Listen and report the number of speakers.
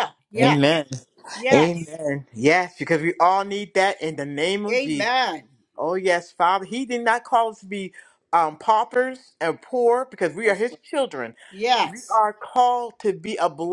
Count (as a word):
two